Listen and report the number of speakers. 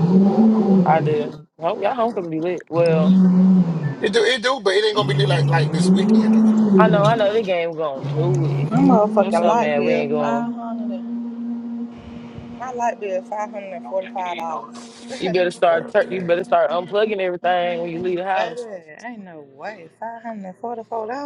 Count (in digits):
3